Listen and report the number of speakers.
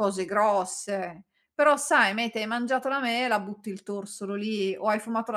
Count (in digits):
1